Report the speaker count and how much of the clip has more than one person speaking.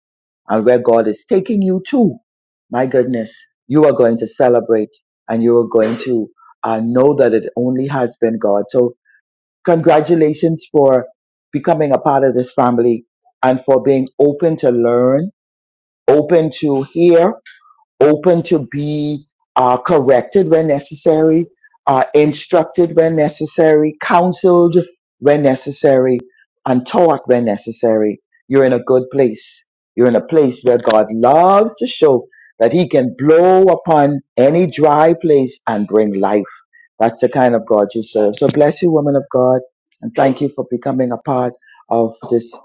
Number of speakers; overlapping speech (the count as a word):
one, no overlap